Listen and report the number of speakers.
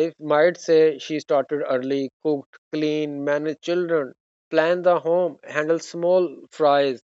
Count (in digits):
1